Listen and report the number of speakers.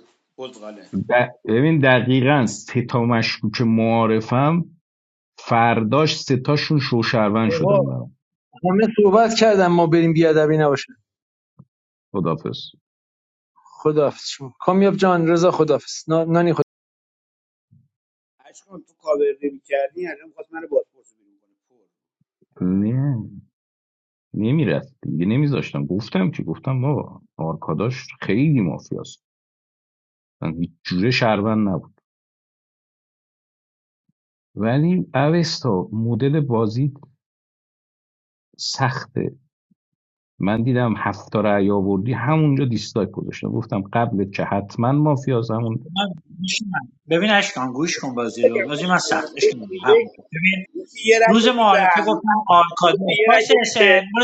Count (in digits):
4